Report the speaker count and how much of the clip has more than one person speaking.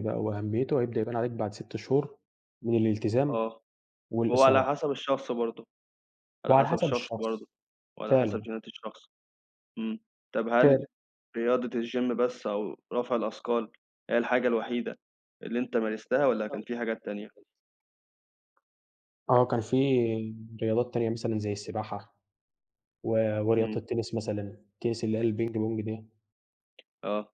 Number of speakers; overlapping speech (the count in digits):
2, about 8%